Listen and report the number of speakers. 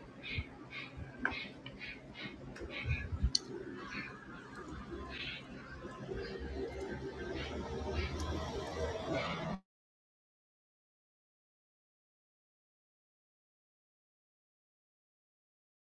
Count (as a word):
zero